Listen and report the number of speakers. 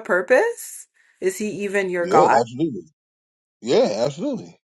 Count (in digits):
2